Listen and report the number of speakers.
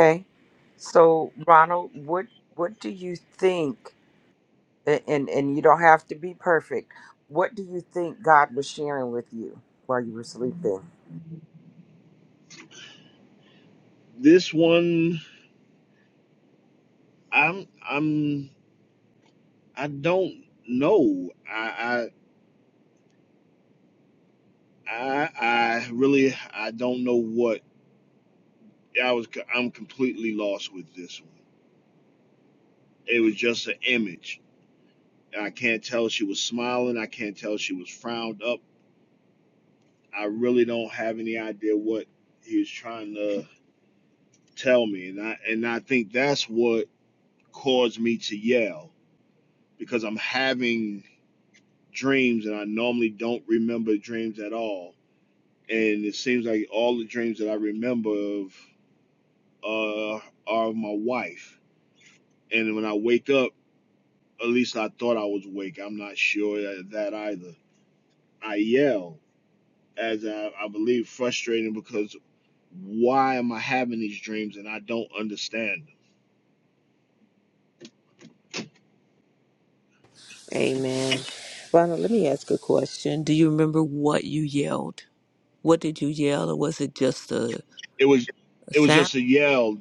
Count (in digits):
3